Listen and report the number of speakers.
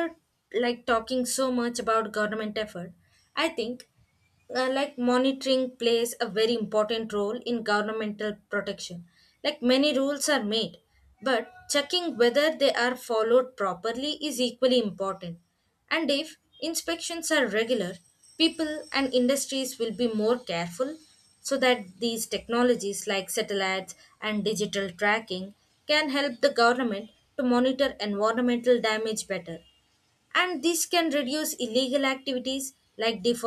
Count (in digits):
1